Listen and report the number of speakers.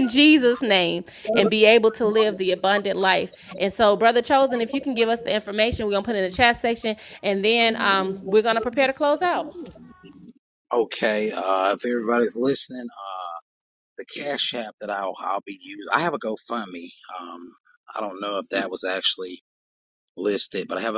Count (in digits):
2